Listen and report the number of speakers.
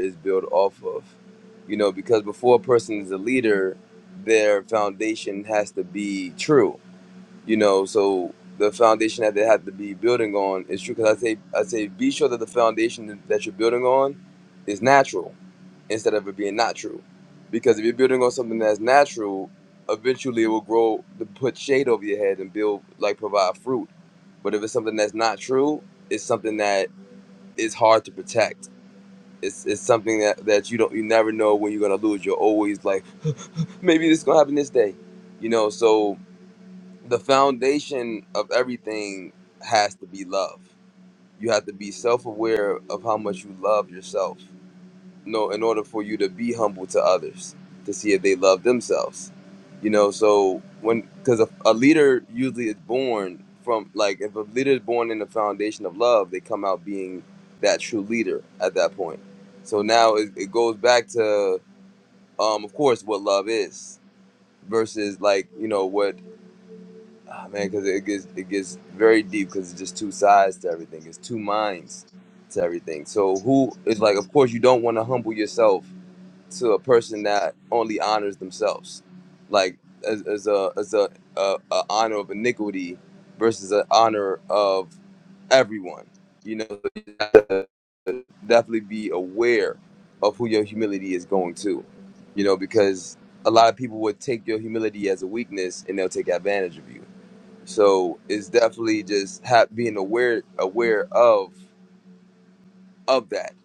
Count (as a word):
one